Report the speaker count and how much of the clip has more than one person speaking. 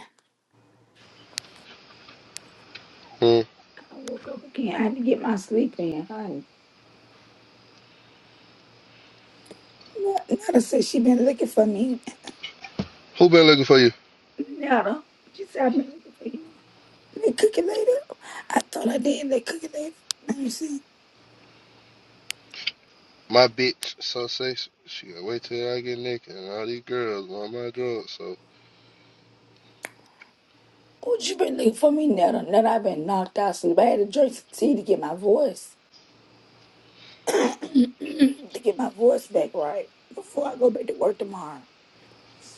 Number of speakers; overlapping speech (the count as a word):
two, no overlap